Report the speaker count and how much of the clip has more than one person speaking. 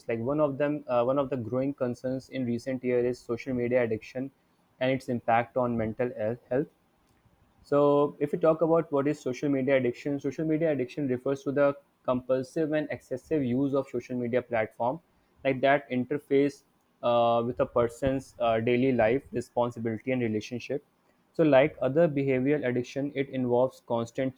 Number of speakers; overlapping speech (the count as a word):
one, no overlap